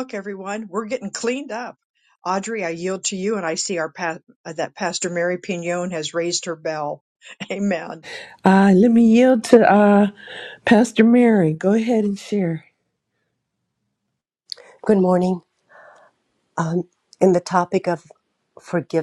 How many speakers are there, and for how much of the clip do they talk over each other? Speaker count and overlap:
three, no overlap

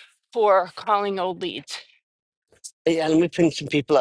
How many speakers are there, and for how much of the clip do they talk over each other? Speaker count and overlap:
two, no overlap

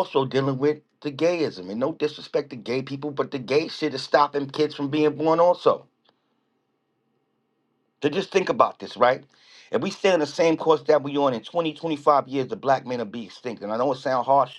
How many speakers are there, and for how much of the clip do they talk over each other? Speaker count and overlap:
one, no overlap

